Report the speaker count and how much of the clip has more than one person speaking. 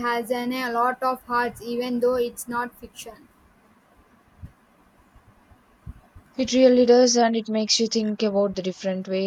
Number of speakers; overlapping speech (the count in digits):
2, no overlap